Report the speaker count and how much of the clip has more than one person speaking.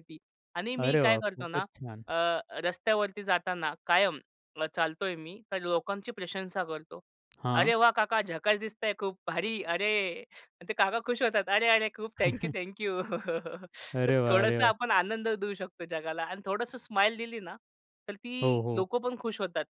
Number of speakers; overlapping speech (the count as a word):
two, about 9%